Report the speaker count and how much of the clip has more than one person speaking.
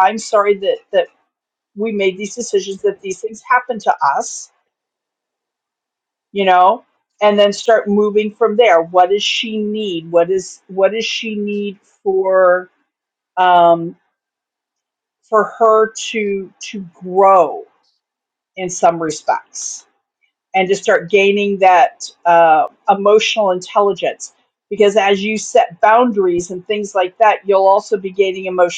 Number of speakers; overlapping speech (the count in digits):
1, no overlap